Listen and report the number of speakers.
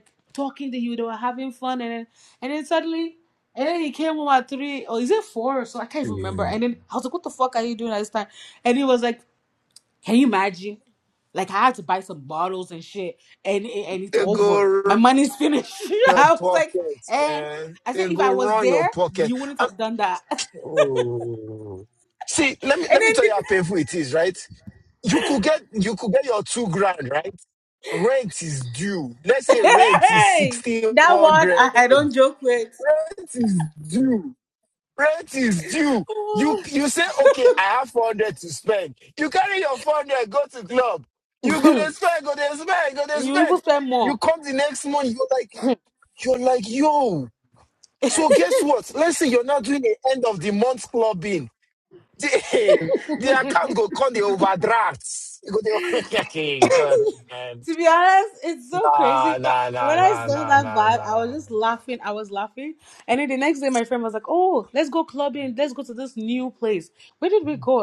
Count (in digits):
2